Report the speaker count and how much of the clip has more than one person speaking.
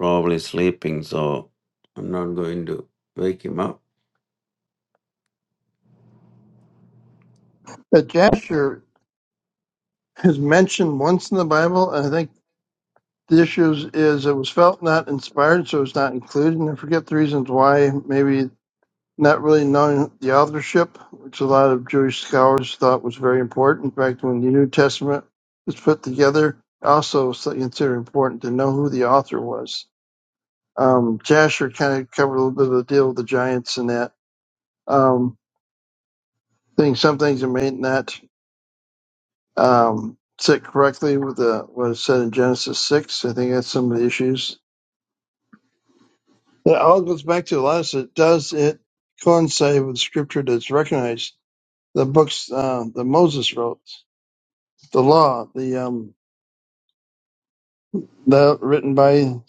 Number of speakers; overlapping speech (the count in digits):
2, no overlap